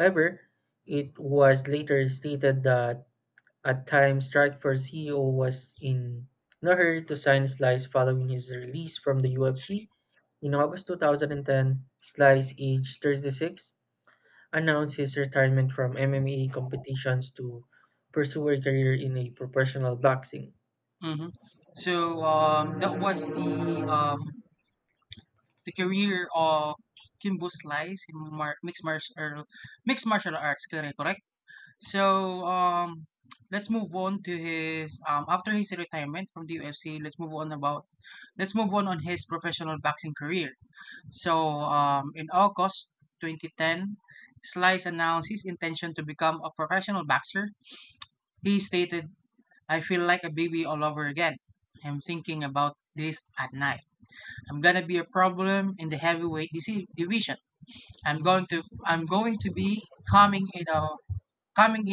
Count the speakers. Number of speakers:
2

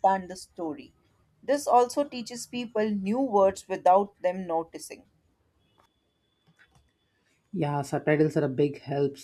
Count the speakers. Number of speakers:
2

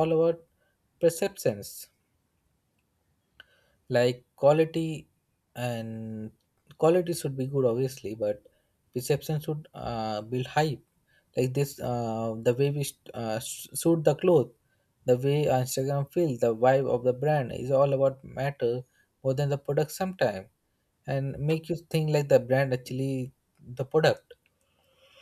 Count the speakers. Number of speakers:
1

